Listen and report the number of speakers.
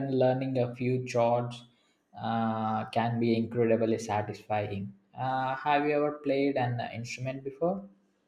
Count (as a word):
one